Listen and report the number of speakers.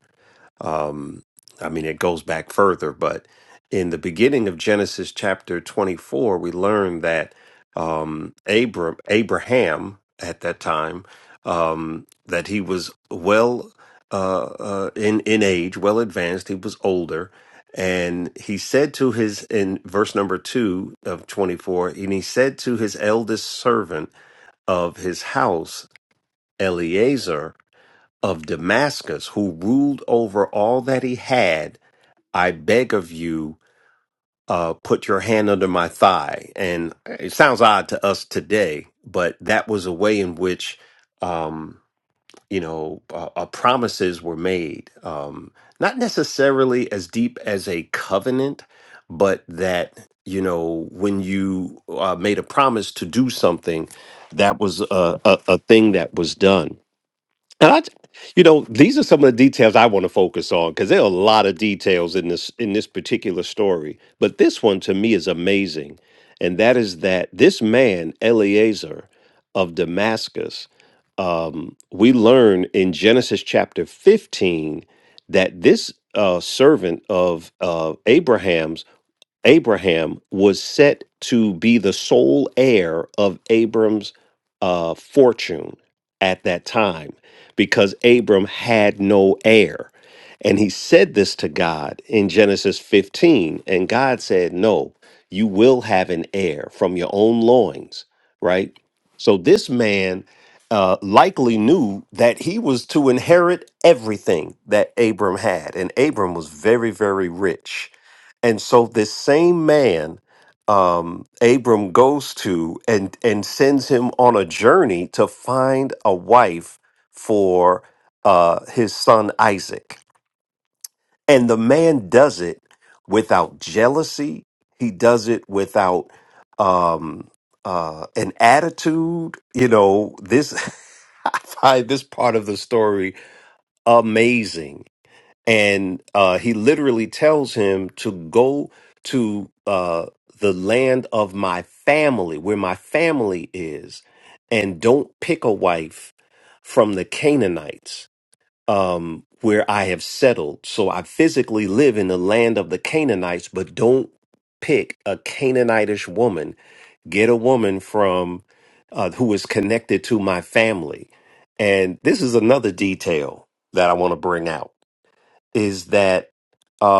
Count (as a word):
one